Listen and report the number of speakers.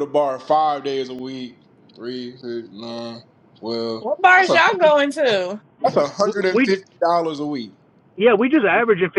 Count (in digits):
3